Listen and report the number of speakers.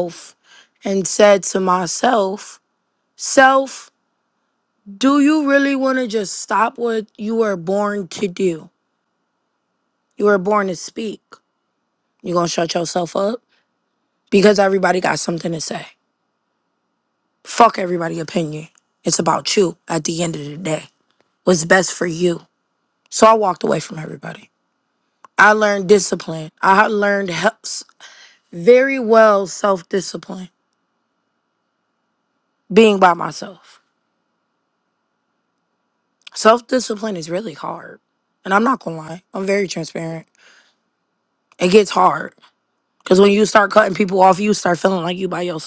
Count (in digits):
1